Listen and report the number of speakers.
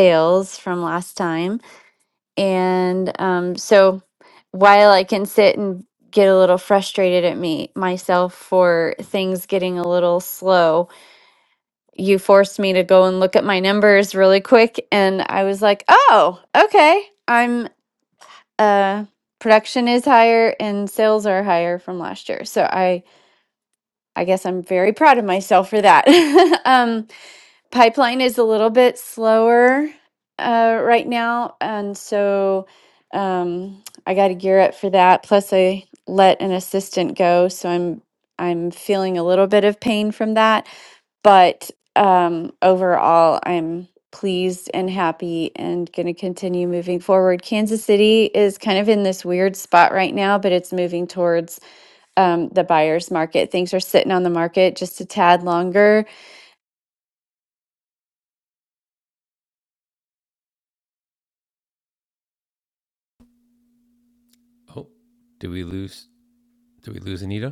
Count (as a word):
two